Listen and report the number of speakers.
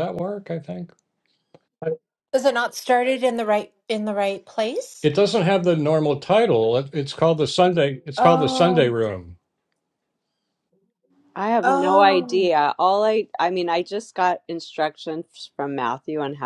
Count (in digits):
3